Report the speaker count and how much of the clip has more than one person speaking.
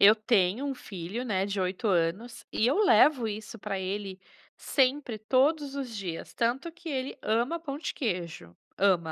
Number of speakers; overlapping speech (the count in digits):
1, no overlap